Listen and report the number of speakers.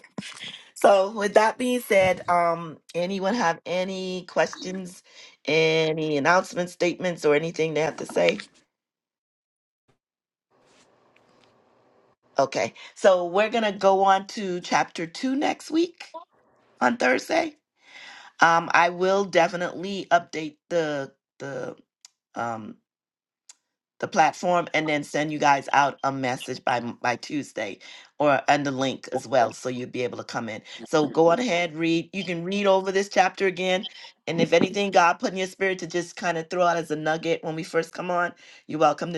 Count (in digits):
1